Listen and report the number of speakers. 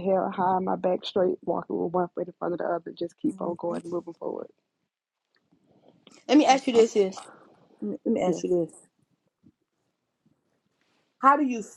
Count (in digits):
2